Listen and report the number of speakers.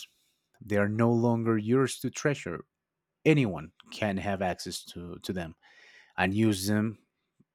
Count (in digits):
1